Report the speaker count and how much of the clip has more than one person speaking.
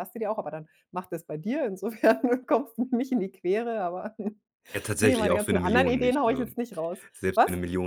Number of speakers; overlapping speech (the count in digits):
2, about 22%